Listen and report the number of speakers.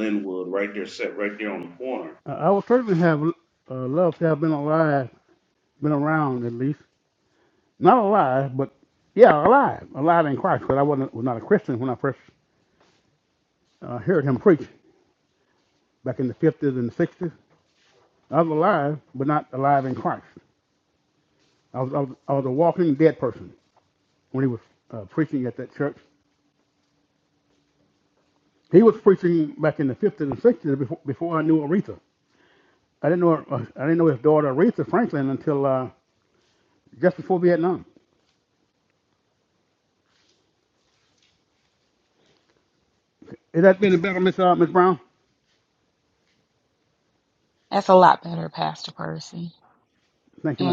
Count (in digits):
3